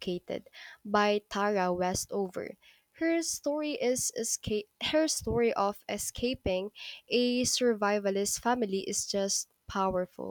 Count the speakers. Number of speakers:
1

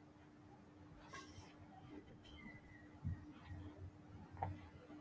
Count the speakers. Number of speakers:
0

